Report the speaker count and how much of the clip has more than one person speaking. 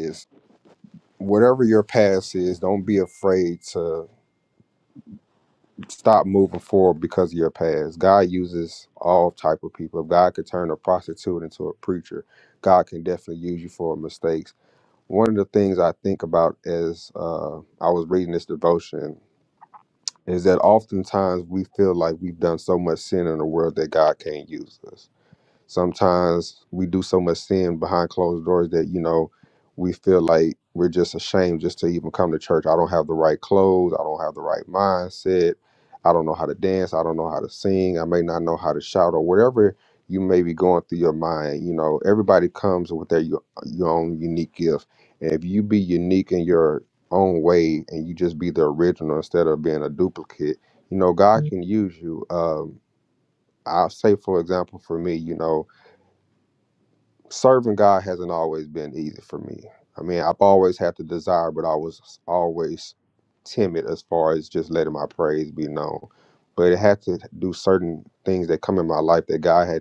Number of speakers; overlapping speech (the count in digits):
1, no overlap